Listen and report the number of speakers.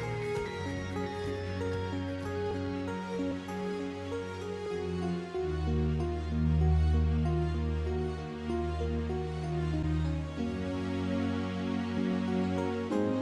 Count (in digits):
0